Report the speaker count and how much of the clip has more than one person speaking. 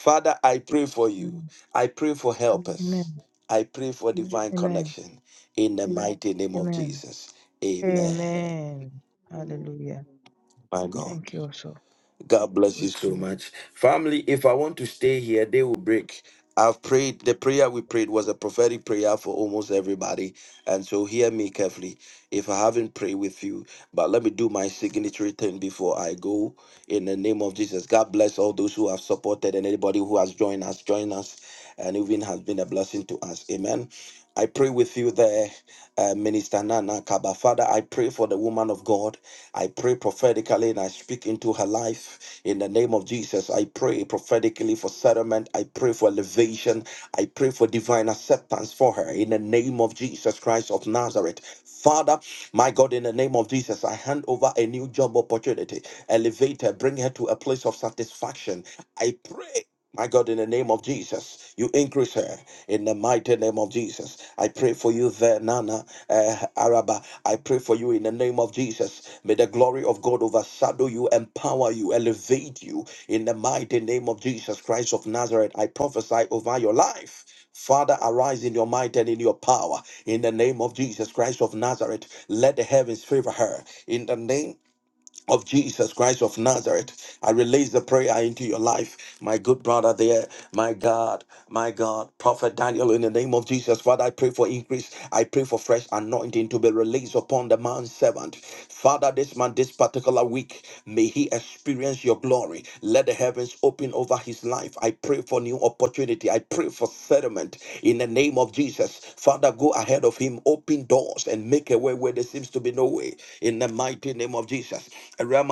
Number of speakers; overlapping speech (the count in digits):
2, about 1%